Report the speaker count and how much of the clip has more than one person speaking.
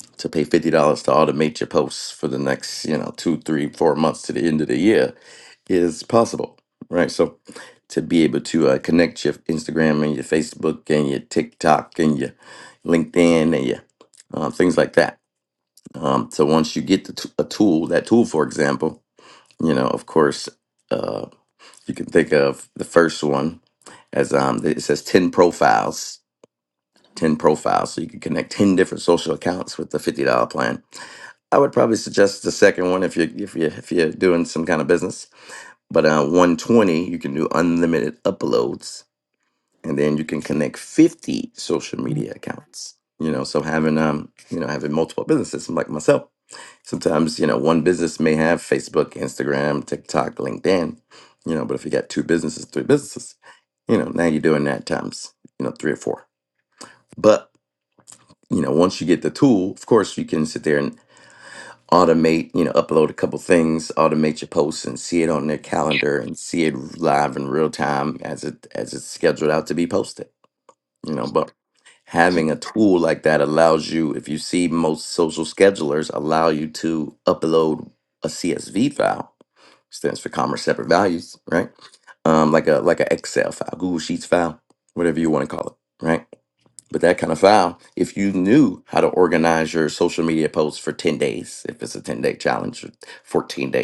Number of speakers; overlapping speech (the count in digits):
1, no overlap